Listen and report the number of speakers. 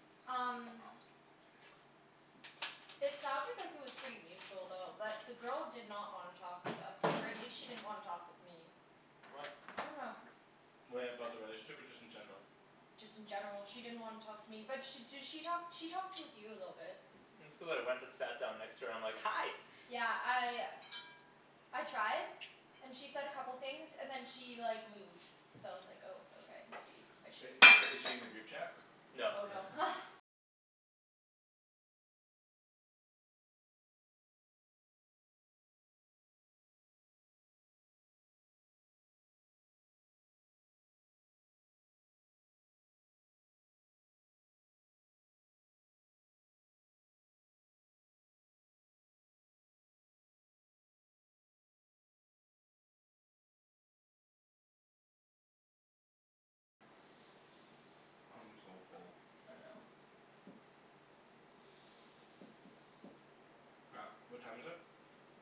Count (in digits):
3